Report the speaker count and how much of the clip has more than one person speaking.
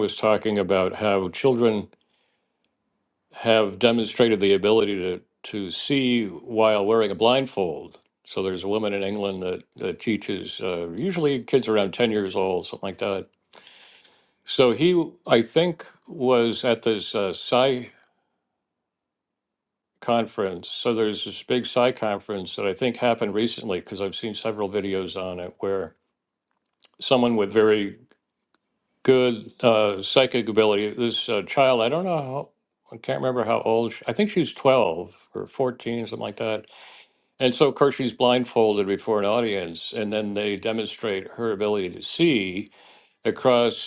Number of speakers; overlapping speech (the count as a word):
one, no overlap